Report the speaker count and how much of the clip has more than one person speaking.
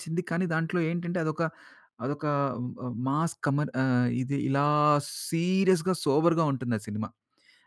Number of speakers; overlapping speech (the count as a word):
one, no overlap